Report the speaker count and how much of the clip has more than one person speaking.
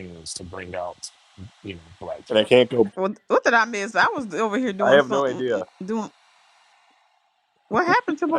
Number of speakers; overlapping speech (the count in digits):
3, about 13%